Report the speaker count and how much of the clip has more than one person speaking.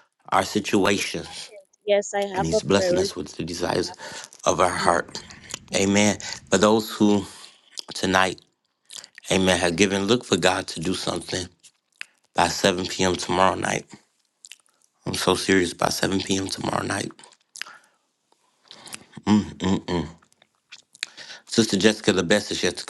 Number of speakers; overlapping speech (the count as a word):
two, about 8%